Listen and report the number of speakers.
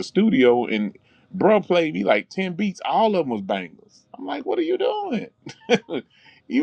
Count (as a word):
one